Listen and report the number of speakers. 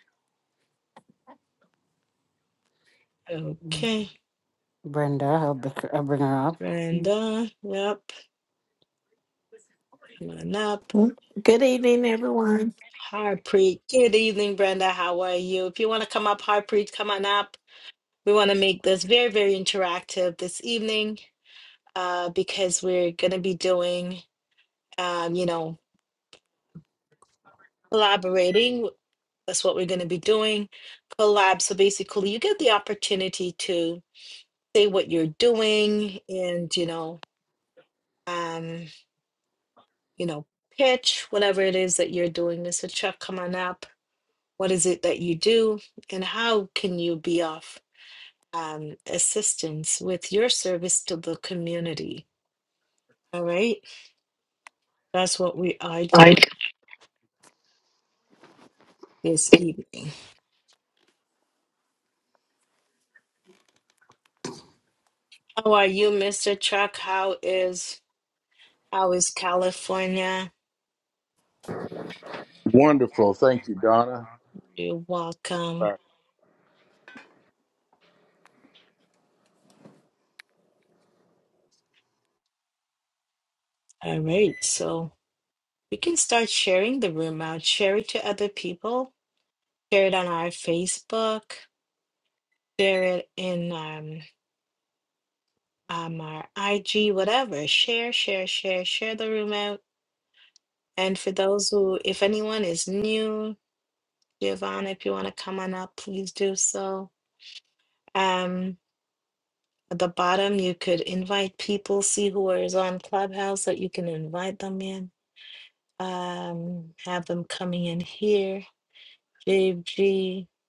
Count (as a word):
four